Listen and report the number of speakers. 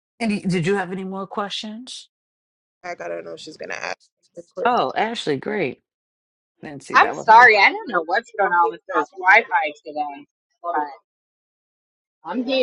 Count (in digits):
3